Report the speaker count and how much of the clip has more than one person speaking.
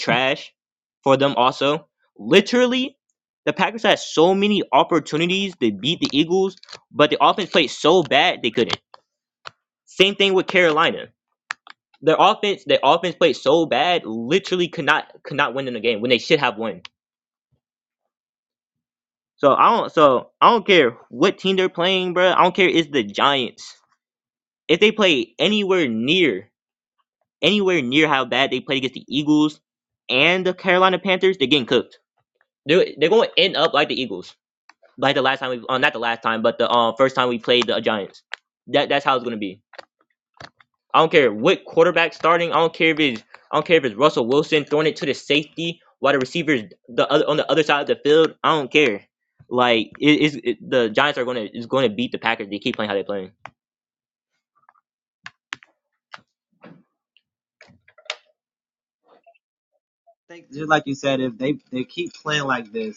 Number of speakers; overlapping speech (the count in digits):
2, no overlap